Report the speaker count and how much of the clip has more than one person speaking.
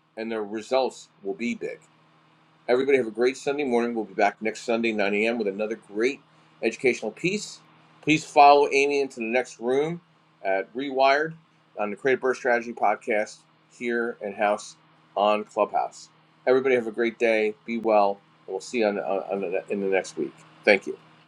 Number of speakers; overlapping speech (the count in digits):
1, no overlap